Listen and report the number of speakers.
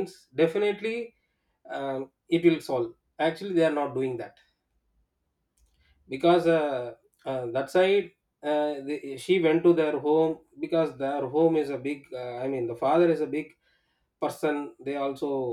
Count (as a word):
one